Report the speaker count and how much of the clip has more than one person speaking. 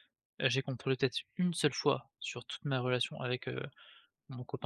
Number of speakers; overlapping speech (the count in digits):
1, no overlap